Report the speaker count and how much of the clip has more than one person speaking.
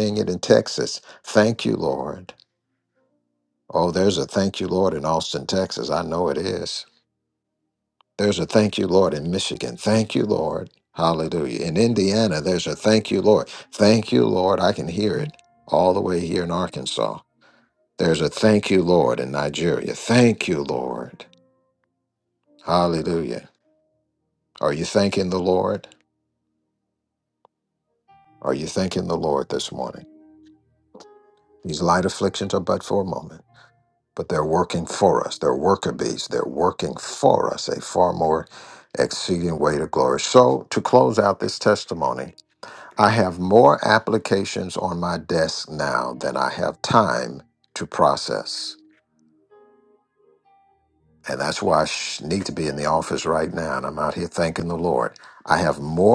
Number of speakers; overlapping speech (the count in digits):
1, no overlap